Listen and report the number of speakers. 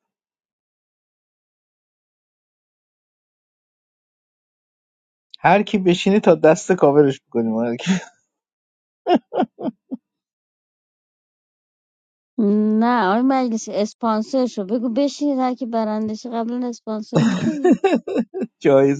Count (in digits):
2